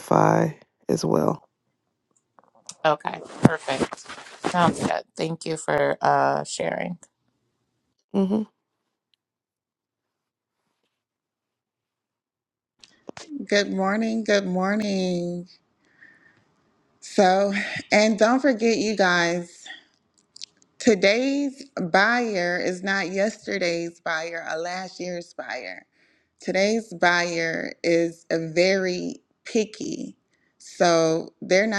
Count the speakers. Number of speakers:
3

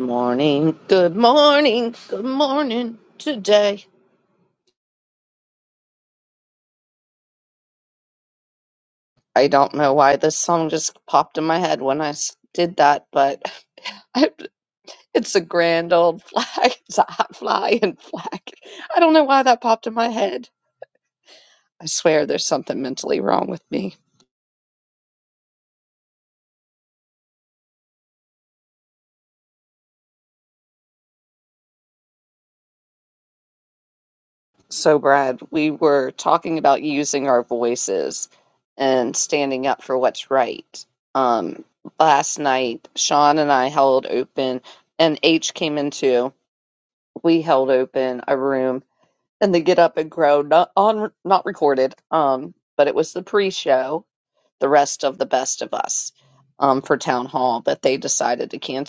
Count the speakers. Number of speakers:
1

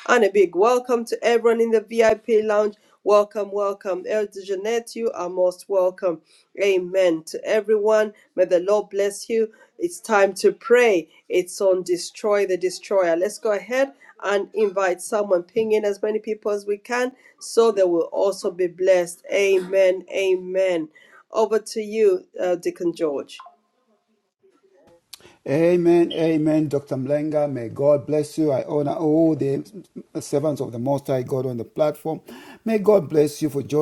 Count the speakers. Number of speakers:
2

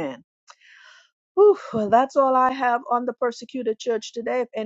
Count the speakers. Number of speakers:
1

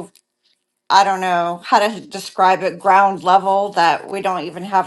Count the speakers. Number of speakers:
1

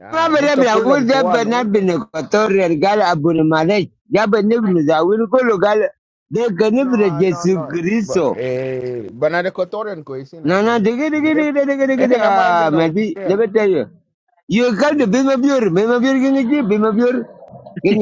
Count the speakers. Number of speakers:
2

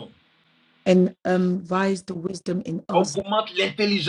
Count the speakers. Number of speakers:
2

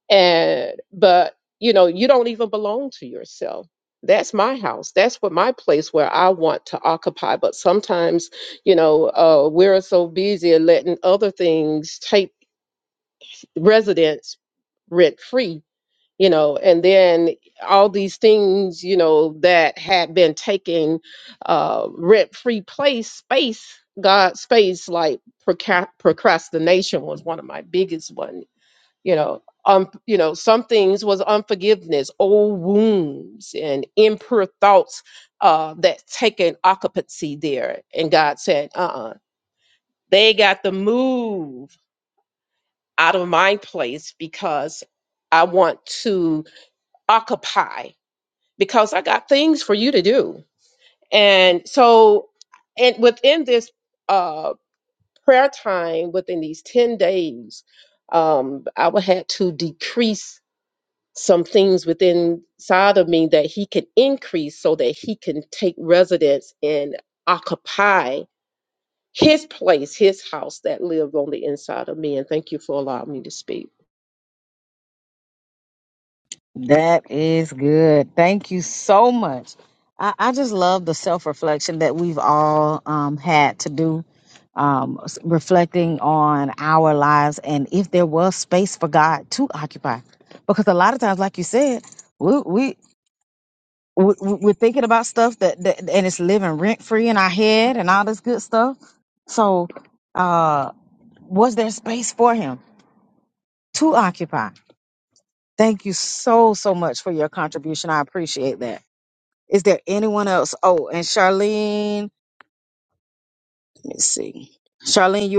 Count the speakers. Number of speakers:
2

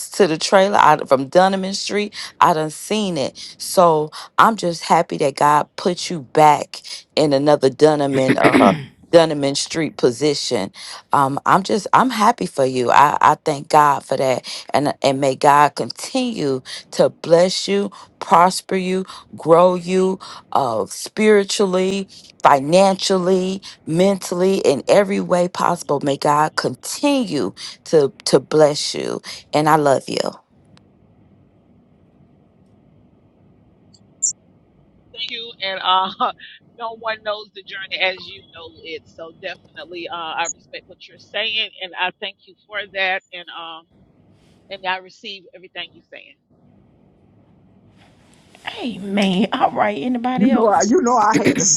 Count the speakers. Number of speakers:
4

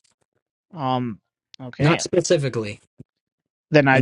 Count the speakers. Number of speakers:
2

